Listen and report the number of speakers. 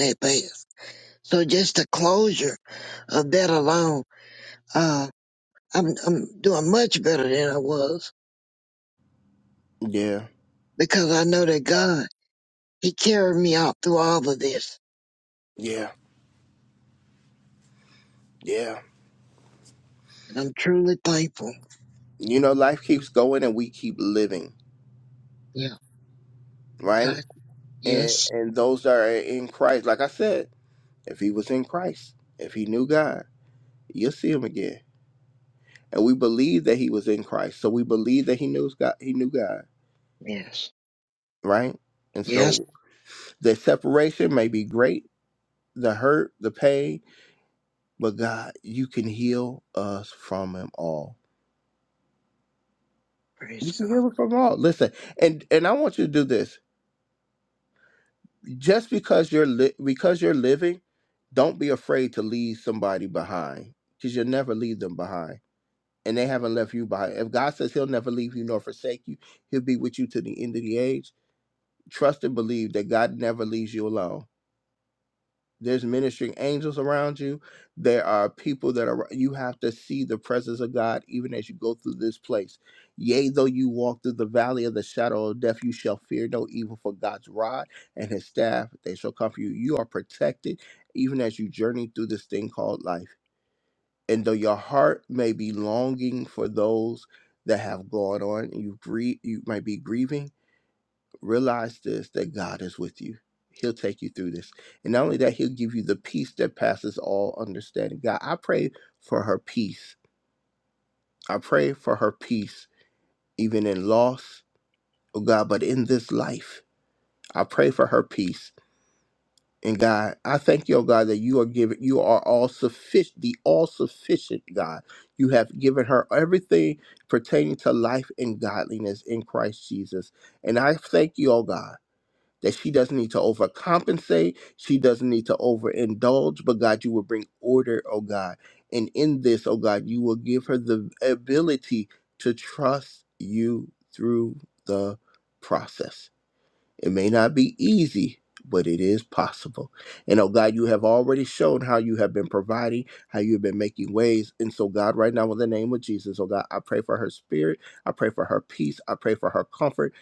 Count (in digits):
2